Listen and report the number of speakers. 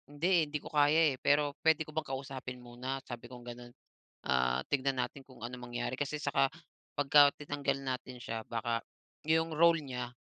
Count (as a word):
one